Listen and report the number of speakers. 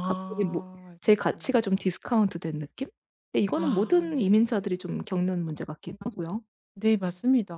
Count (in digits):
2